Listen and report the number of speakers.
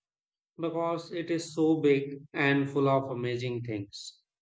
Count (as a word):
one